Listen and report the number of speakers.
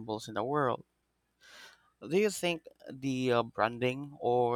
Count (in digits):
1